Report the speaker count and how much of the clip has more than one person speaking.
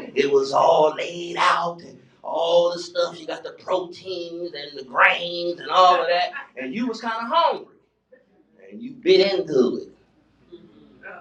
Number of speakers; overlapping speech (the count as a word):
one, no overlap